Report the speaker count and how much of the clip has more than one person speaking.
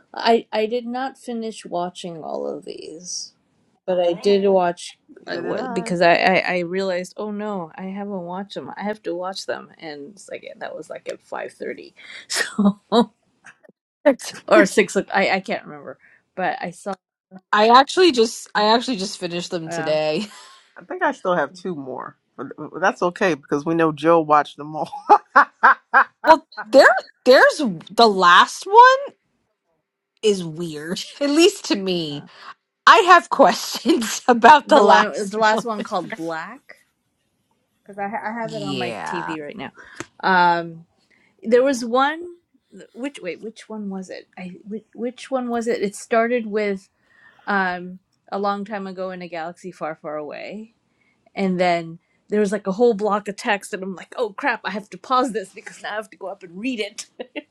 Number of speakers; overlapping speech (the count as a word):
three, about 5%